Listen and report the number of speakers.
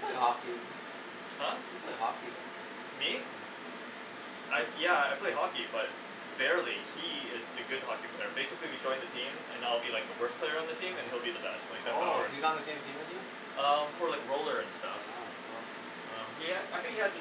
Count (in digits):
2